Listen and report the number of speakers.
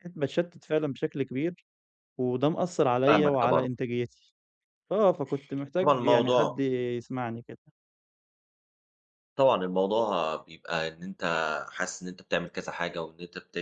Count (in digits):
2